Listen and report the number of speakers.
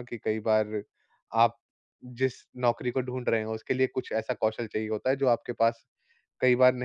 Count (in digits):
1